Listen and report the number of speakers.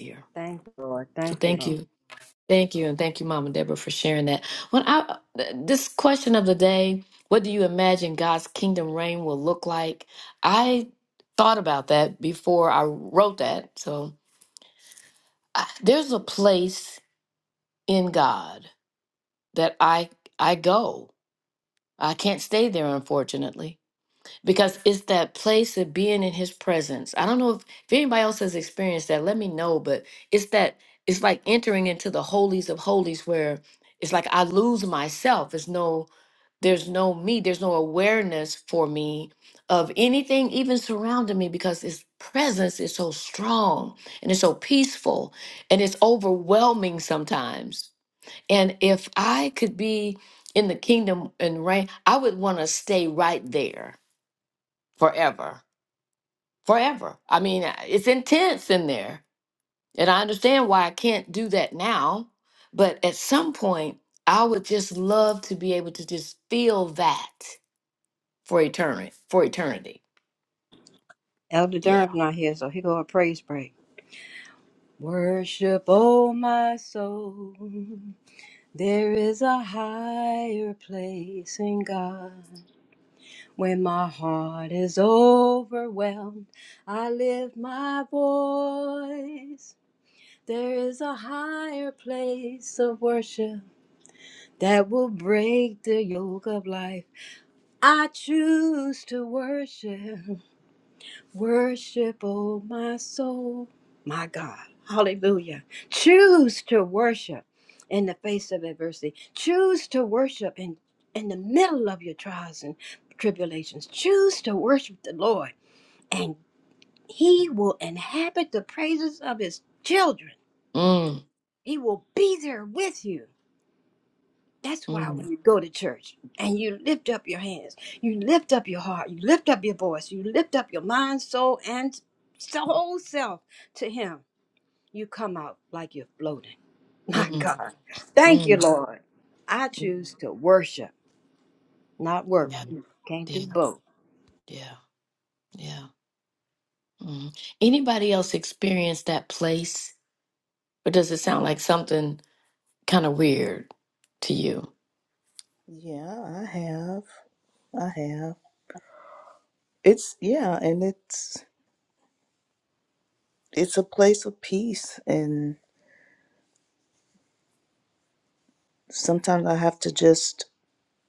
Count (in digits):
3